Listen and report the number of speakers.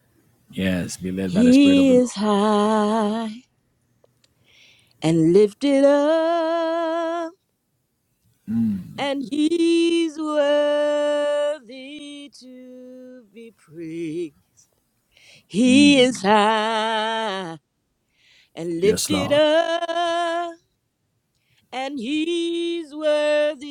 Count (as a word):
two